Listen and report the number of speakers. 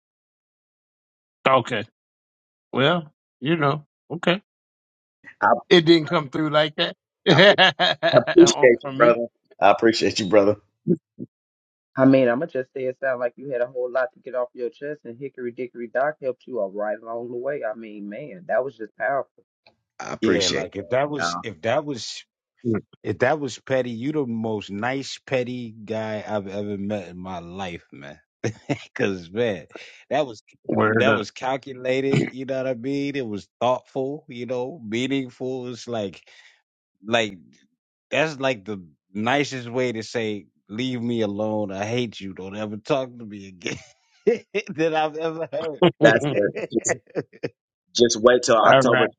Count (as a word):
four